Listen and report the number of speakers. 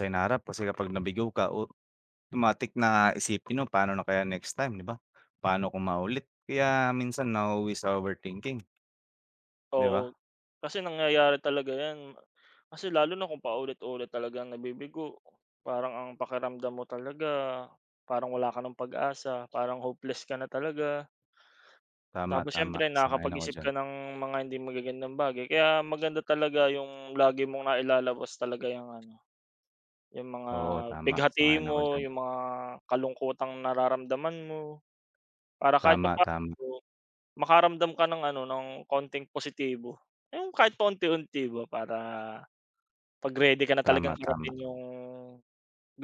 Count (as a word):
two